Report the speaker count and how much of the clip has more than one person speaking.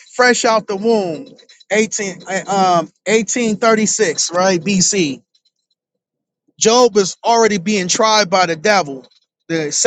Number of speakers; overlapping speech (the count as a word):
one, no overlap